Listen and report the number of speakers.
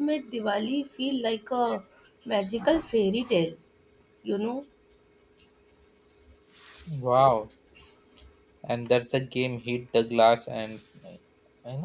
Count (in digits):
2